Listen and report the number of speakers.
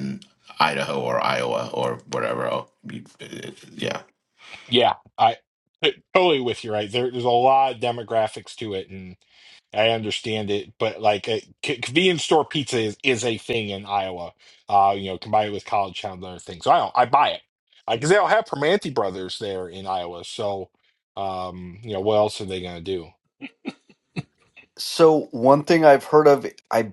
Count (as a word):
three